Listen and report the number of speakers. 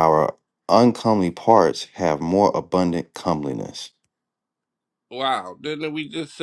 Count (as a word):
two